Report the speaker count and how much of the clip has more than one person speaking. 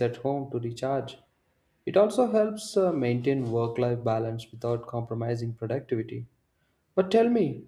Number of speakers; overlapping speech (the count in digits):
1, no overlap